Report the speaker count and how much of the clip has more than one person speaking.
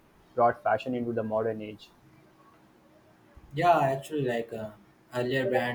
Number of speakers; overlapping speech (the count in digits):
2, no overlap